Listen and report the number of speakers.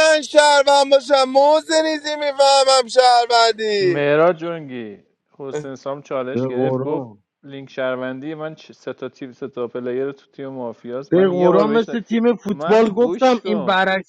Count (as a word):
three